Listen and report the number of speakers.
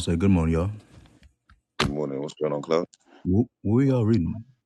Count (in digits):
2